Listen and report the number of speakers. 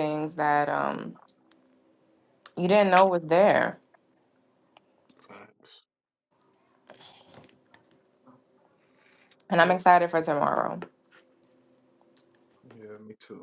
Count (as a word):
two